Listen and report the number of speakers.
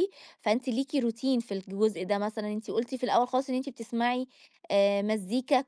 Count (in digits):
1